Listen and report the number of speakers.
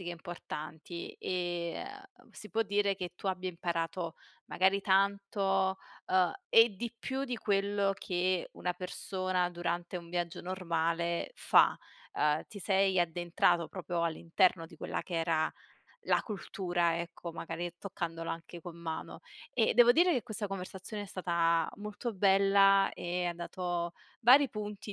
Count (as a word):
one